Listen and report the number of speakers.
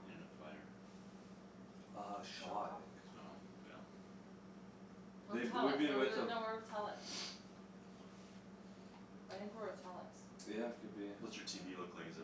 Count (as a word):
three